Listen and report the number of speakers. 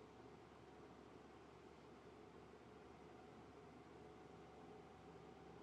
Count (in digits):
0